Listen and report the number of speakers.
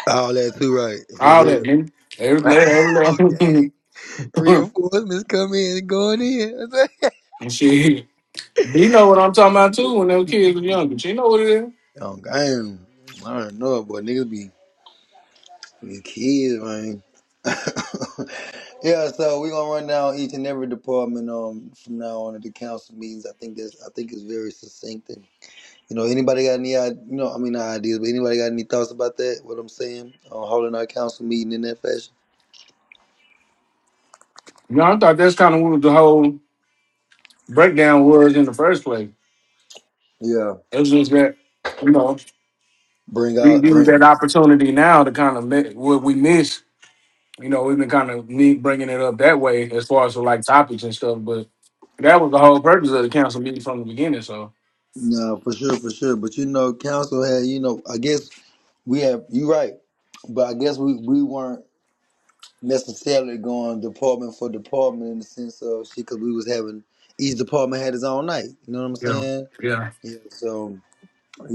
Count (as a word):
two